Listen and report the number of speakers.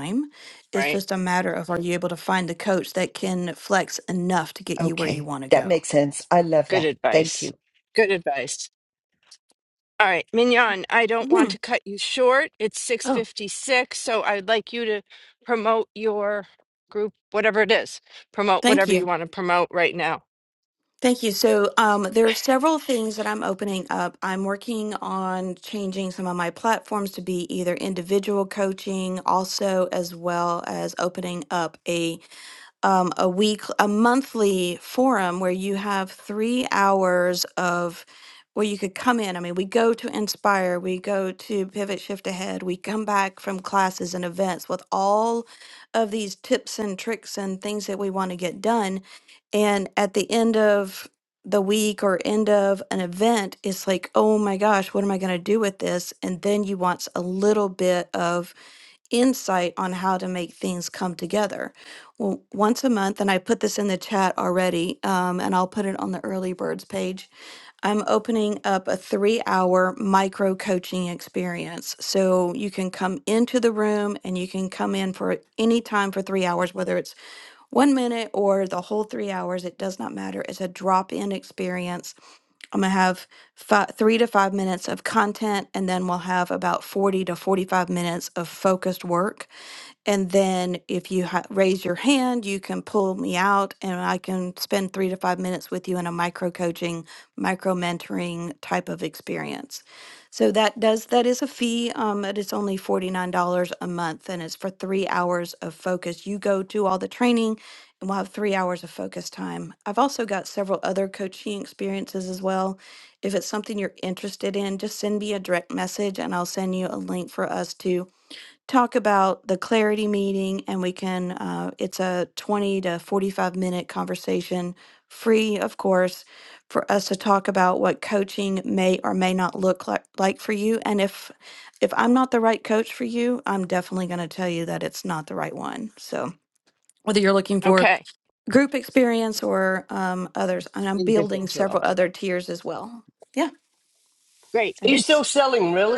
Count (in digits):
4